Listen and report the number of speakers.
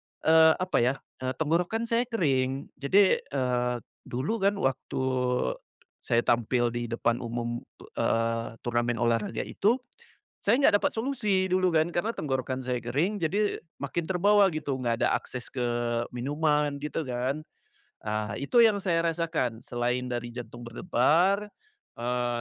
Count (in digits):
1